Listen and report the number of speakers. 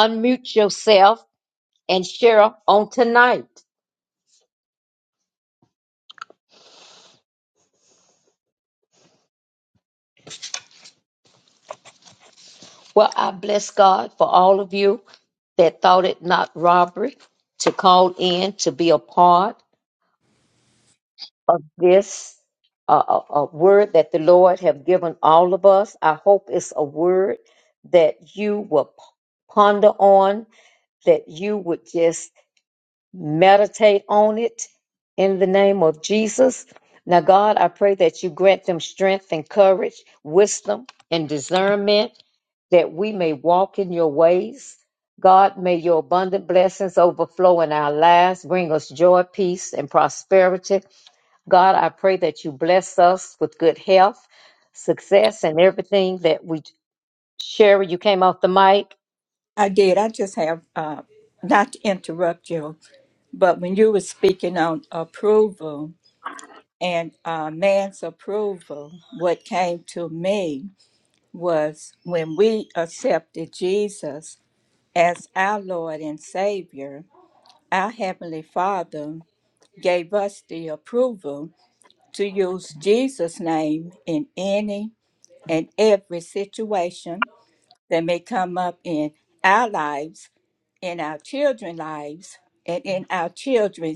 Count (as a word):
two